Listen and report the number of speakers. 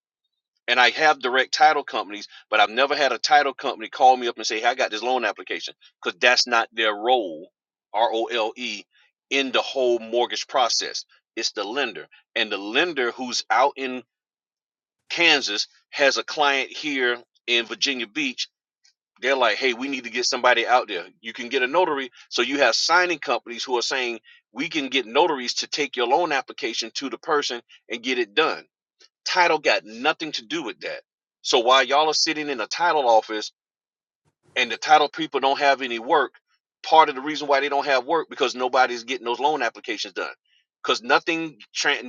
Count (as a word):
one